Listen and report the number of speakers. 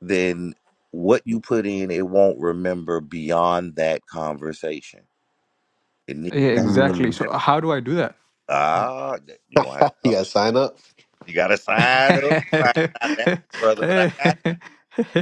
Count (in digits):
3